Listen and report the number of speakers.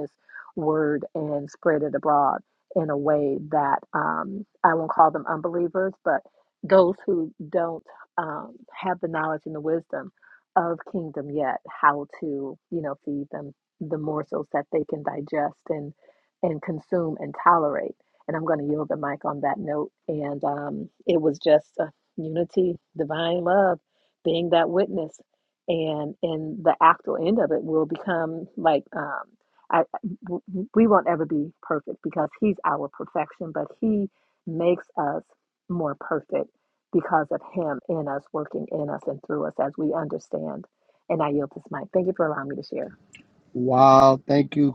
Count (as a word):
two